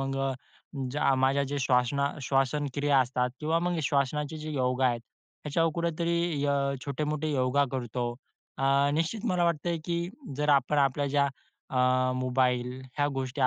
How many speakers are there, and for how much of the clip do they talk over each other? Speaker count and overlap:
one, no overlap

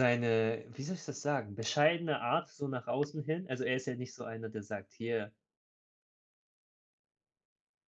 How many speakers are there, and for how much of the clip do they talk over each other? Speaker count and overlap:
one, no overlap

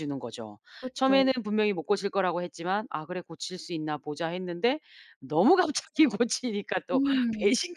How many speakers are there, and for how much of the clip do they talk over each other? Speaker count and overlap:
two, about 8%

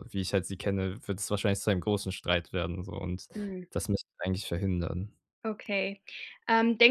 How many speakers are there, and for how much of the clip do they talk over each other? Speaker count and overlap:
two, no overlap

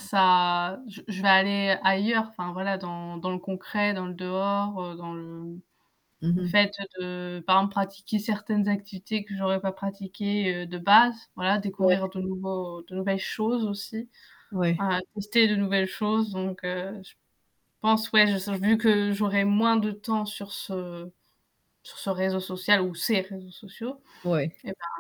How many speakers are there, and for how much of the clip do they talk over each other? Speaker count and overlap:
two, about 1%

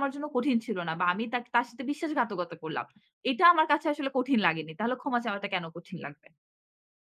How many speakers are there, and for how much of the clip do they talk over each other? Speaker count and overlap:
one, no overlap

